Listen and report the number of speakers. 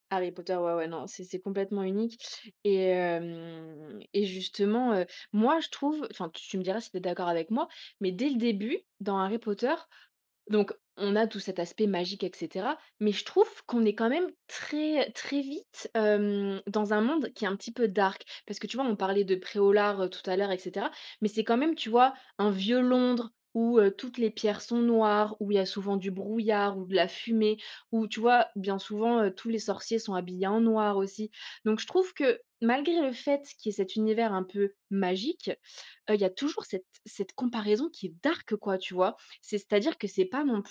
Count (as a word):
one